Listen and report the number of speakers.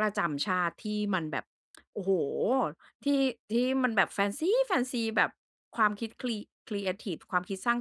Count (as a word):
one